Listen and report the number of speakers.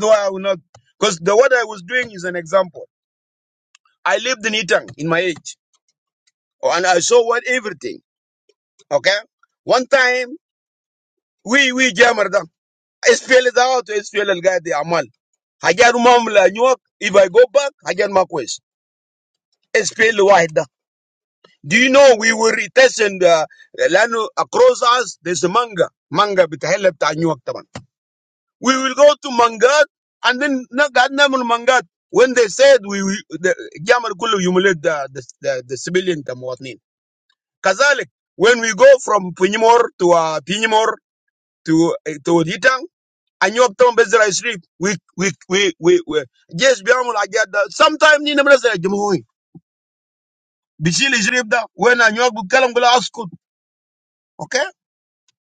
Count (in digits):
1